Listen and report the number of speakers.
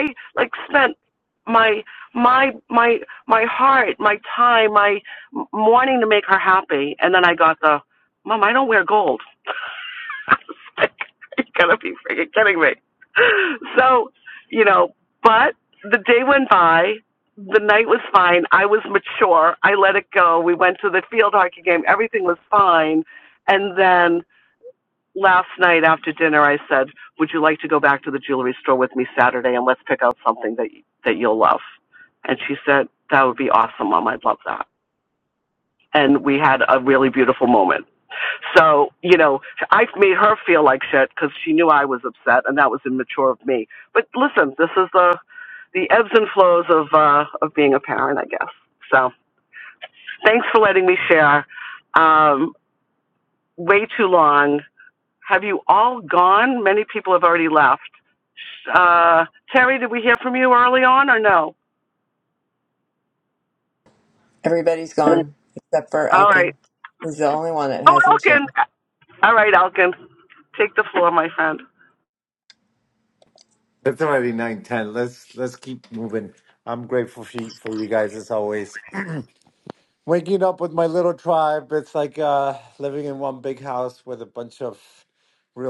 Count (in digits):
3